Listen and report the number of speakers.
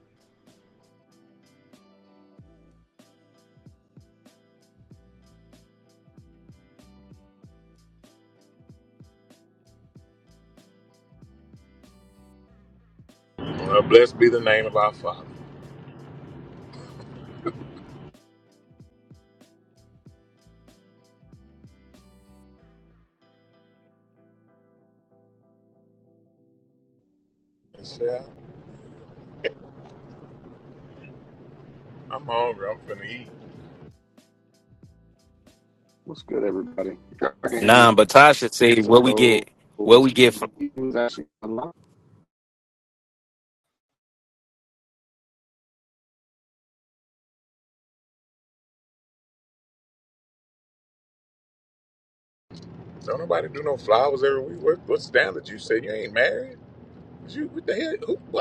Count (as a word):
three